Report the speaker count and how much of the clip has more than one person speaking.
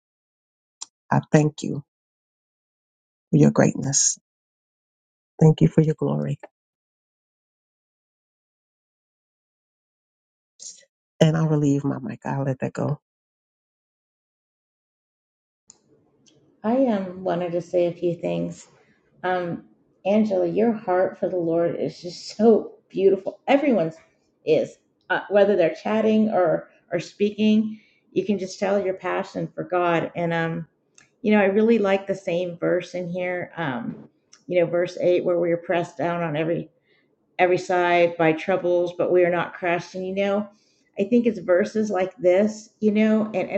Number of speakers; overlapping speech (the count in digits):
2, no overlap